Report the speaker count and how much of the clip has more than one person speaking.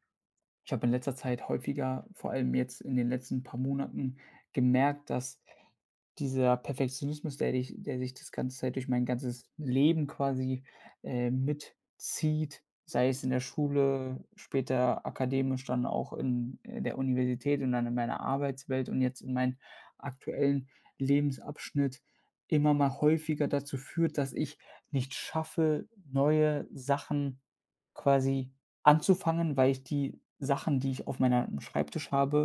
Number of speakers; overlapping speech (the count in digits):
1, no overlap